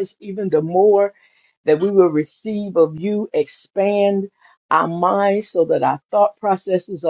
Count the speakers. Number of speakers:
1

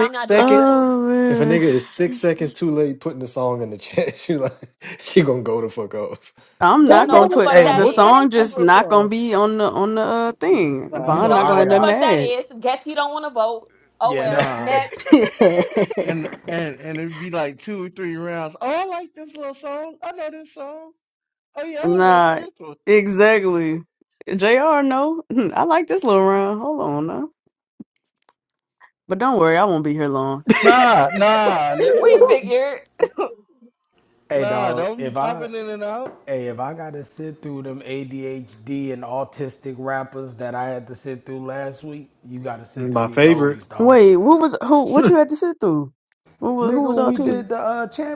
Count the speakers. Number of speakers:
5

